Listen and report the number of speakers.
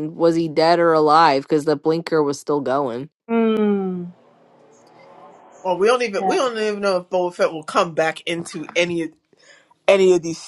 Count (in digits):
3